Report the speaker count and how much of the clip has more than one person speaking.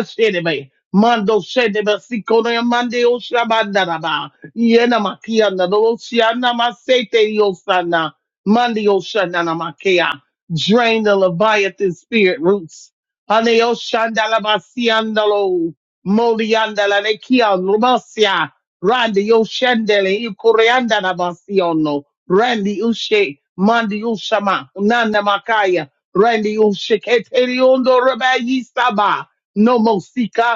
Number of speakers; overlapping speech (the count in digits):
1, no overlap